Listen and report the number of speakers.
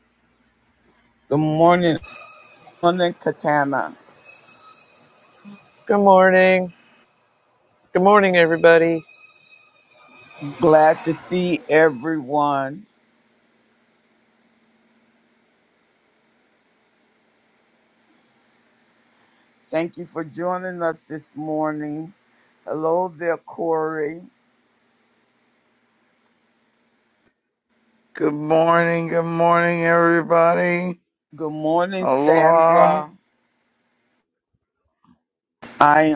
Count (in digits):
3